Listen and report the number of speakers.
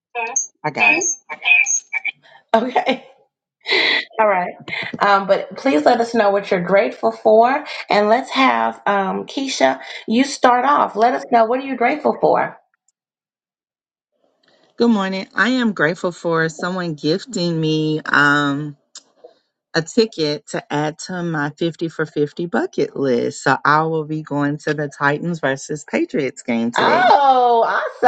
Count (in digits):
2